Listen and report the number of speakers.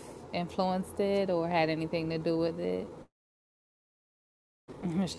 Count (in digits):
1